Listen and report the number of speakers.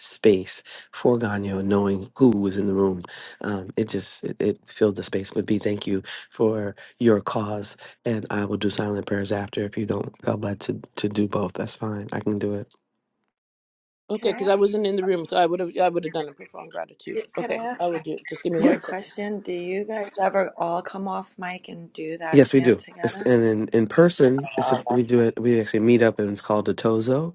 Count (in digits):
3